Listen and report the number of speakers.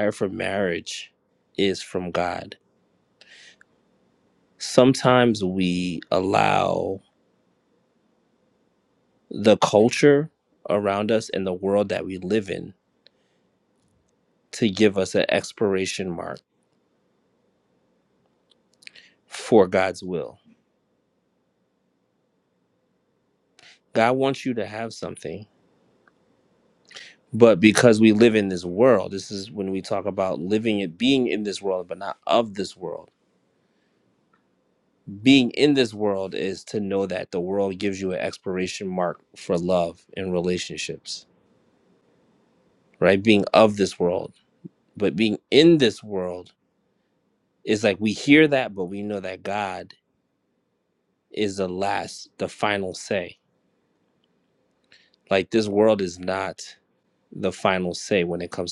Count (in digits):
1